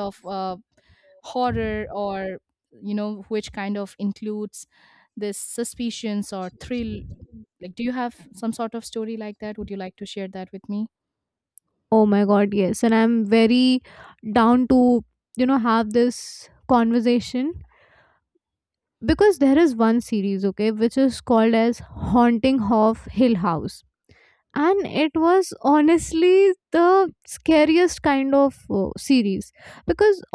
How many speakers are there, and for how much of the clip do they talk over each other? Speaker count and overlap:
two, no overlap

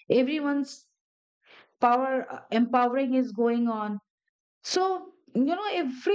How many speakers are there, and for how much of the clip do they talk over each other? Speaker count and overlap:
one, no overlap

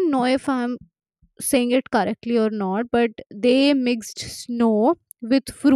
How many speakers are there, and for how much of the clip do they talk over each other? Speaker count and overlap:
one, no overlap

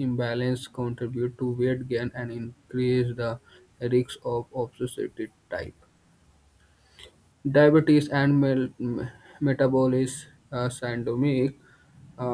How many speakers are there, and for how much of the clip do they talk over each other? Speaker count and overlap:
one, no overlap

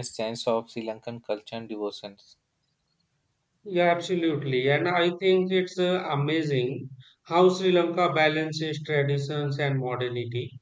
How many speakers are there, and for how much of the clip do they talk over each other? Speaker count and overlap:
two, no overlap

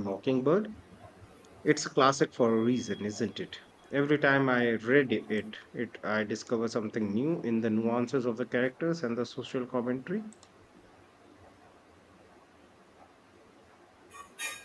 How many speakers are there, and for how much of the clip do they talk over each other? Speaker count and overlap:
one, no overlap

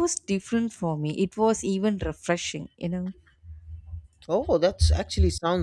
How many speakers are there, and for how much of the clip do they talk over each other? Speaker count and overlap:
two, no overlap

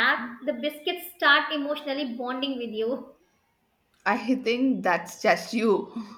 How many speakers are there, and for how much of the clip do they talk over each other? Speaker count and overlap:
two, no overlap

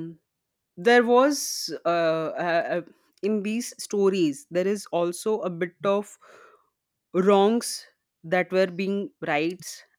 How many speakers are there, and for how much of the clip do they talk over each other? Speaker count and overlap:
one, no overlap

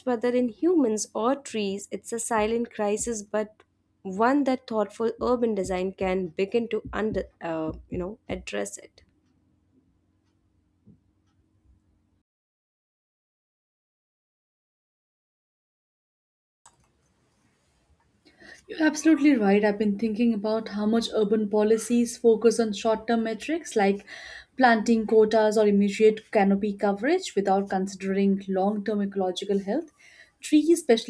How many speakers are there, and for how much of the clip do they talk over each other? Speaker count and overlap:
two, no overlap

